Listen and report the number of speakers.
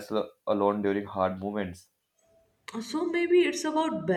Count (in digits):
2